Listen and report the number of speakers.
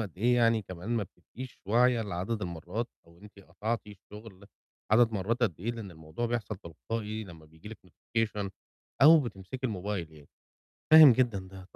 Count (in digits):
1